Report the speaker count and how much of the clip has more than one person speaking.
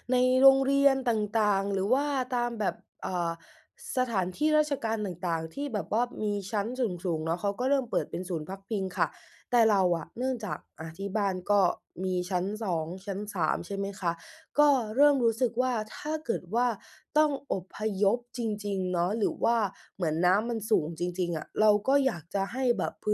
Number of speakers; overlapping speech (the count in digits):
1, no overlap